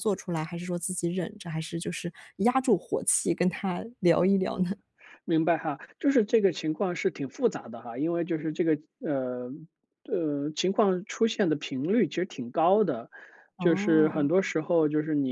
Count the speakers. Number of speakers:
2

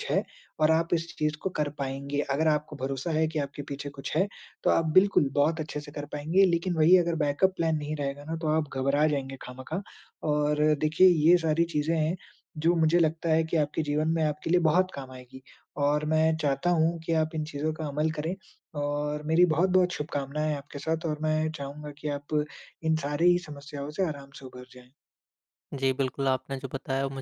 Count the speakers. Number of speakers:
2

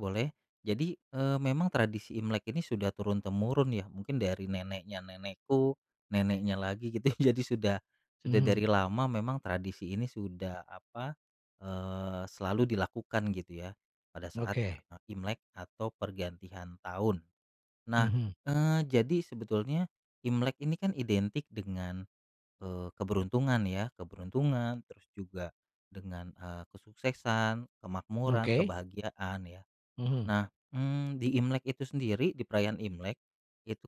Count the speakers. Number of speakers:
2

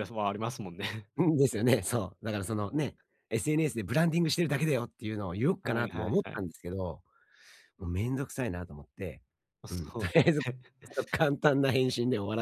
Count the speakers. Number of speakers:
2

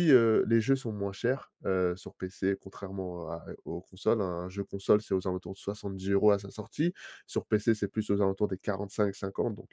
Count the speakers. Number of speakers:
1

